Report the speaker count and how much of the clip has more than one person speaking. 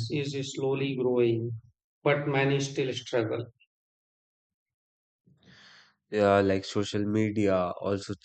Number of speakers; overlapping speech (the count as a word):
two, no overlap